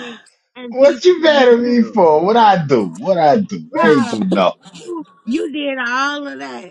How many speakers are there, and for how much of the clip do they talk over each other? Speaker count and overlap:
2, about 26%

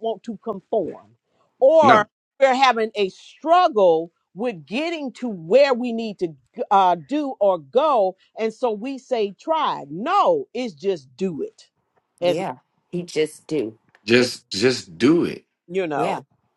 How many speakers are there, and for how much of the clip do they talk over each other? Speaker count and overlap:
3, about 5%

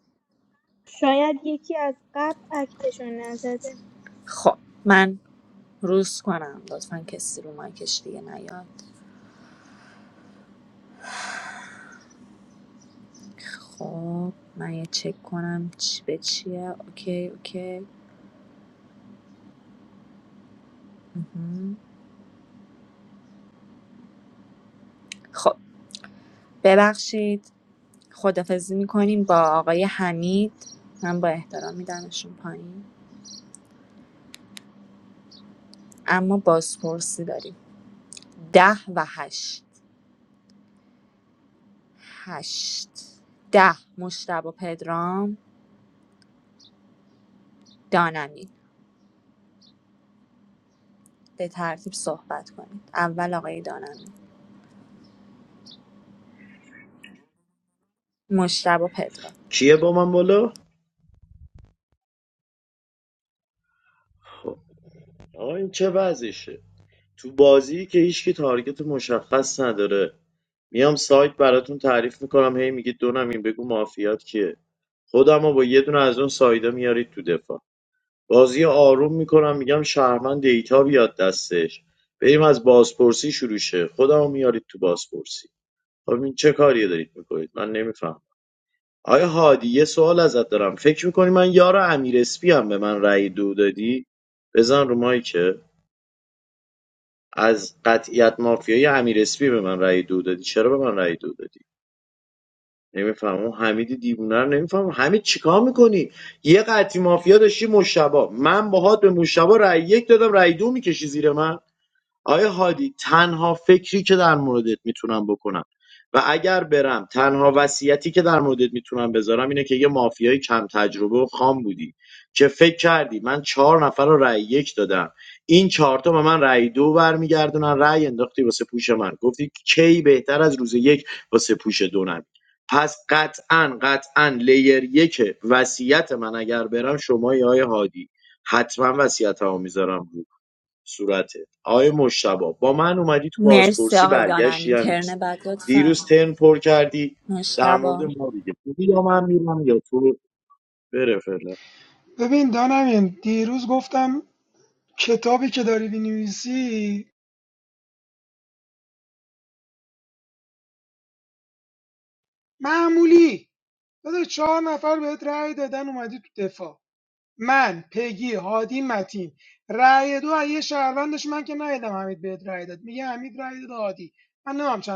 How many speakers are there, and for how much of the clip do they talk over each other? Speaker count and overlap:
4, about 1%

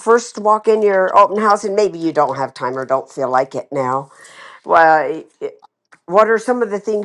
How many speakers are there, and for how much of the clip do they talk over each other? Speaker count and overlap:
1, no overlap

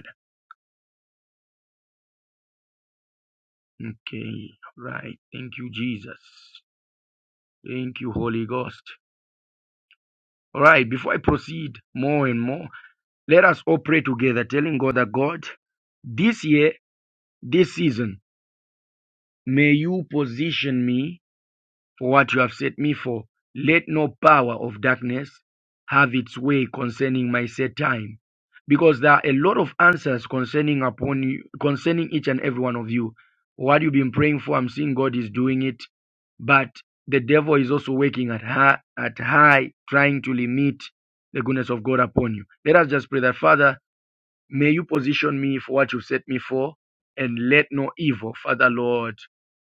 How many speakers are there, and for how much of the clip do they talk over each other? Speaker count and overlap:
1, no overlap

